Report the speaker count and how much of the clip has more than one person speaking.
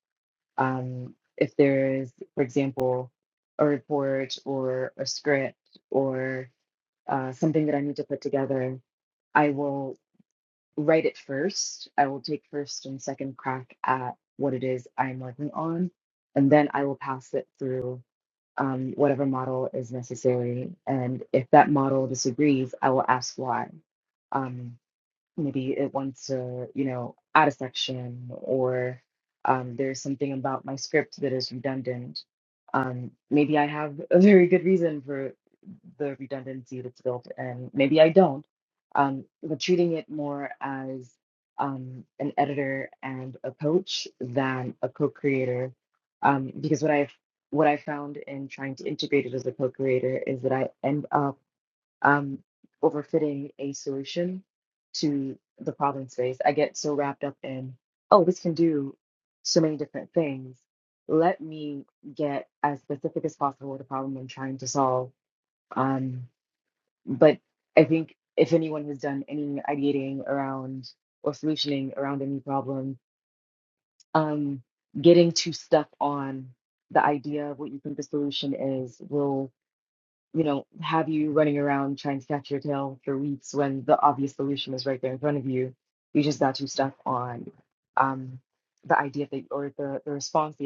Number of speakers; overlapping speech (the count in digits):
1, no overlap